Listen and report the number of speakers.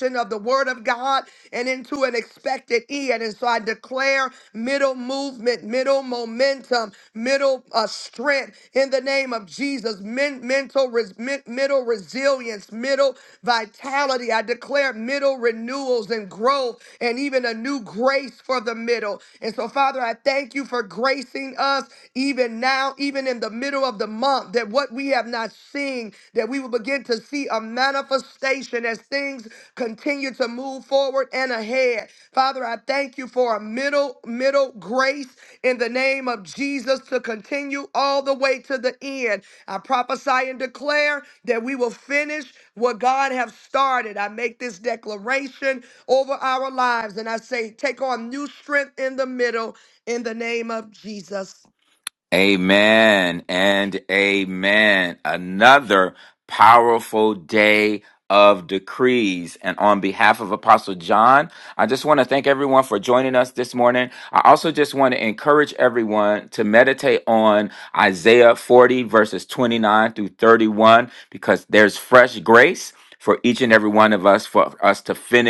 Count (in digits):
2